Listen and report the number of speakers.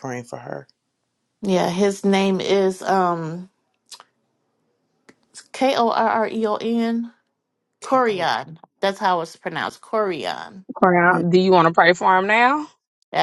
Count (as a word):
three